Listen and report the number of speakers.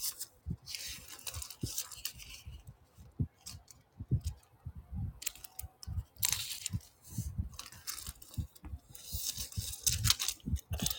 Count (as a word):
zero